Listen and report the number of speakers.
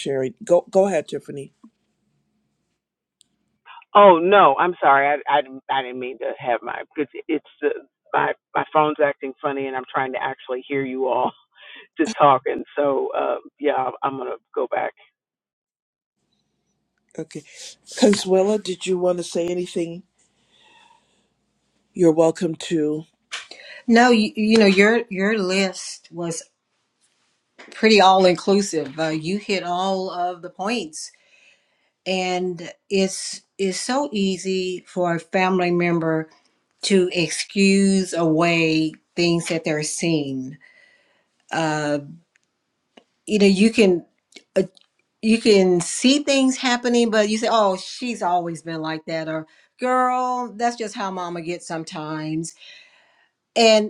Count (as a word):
three